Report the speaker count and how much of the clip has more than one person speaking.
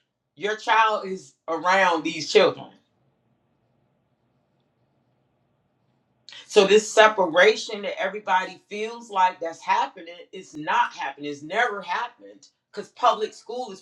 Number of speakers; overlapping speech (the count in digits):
1, no overlap